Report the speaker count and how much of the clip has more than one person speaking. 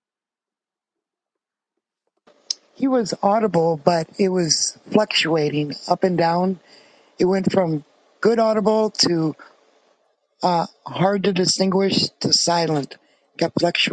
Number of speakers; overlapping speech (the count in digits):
1, no overlap